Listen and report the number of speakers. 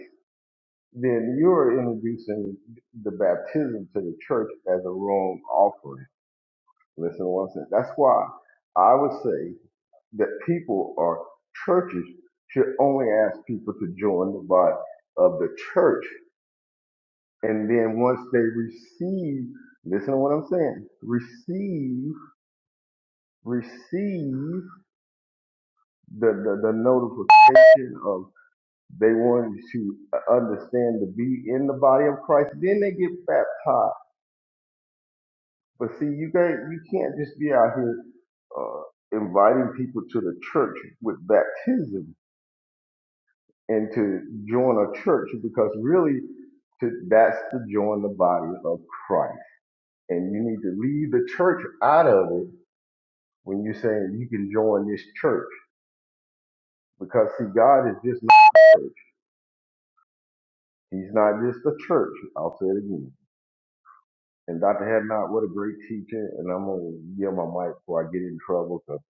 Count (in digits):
1